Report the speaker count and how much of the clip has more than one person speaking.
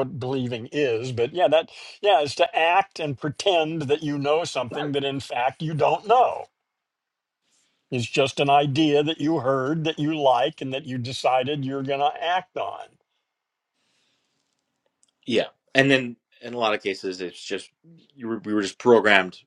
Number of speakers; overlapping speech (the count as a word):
two, no overlap